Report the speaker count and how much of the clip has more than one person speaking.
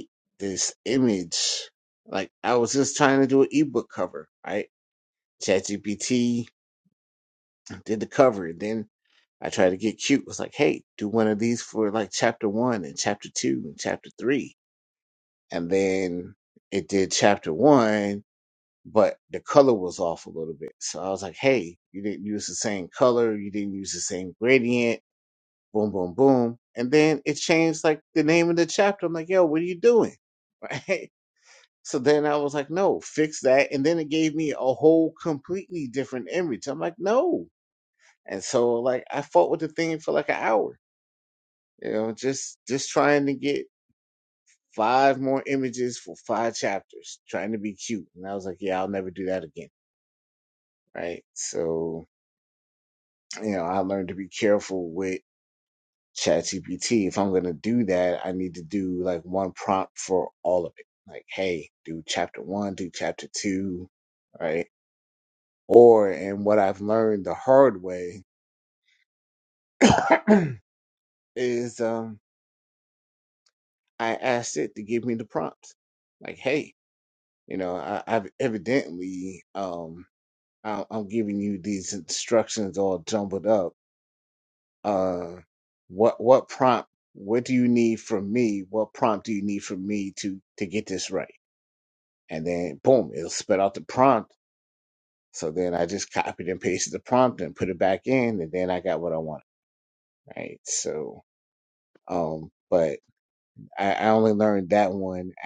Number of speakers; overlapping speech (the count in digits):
1, no overlap